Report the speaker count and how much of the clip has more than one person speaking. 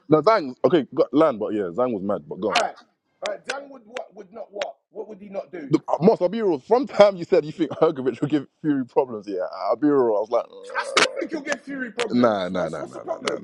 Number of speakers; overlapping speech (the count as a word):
two, about 14%